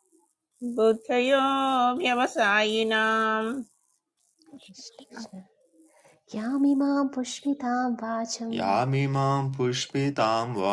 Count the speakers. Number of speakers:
3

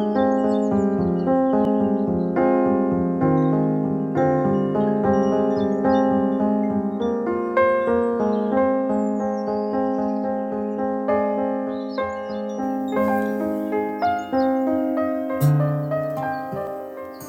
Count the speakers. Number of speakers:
0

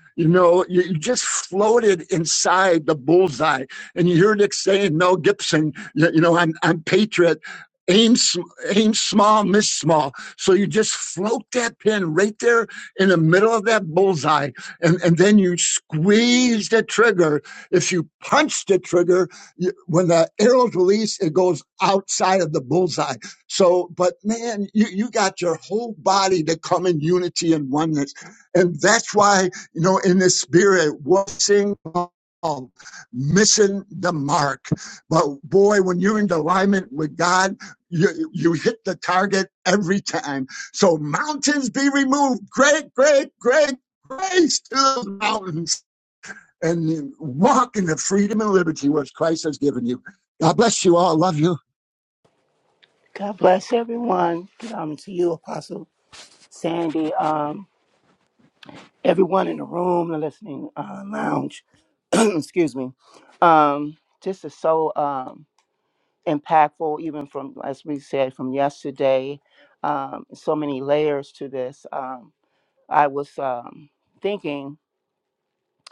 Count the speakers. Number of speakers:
2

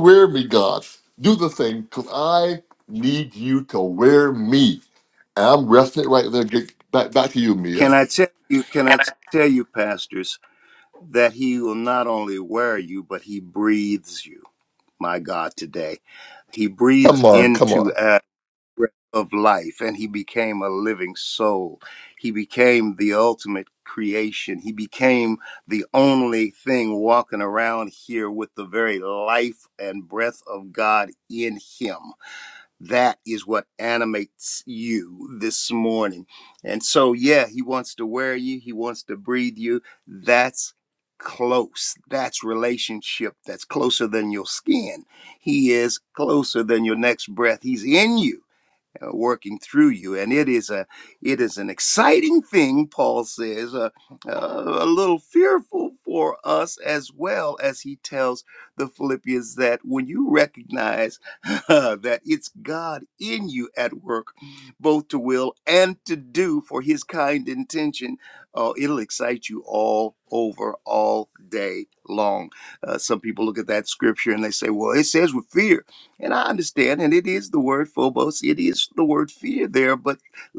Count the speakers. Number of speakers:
2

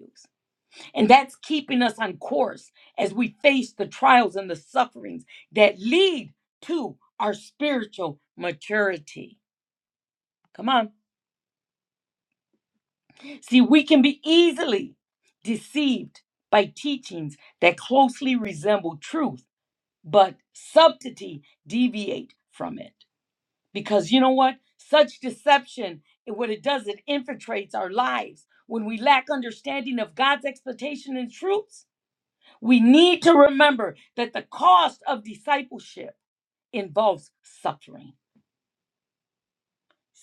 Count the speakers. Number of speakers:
1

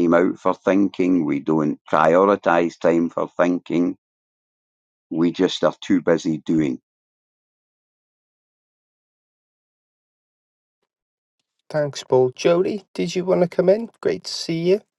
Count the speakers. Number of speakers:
2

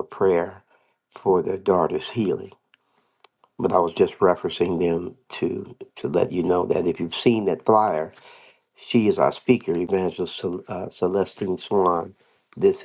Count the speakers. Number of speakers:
1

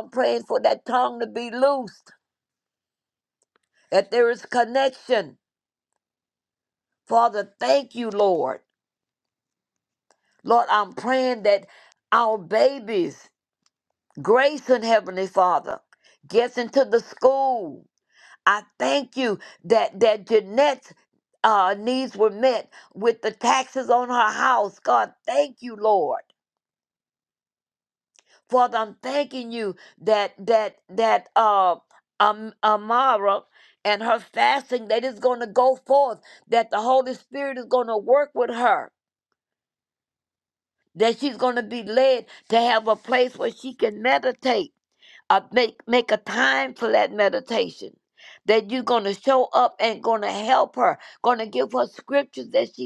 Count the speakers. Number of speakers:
1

